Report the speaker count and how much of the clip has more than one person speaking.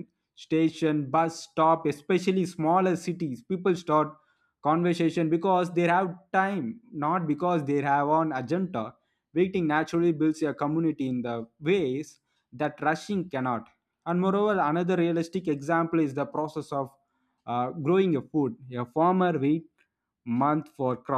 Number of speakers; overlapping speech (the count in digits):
1, no overlap